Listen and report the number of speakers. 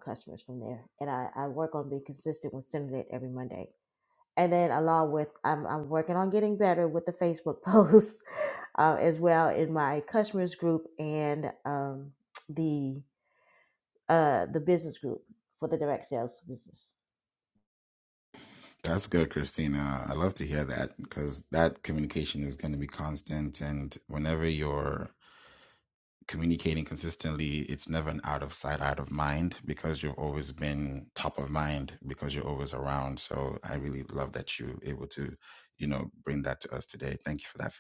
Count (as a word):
two